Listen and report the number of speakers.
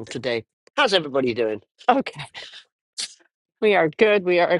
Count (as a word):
two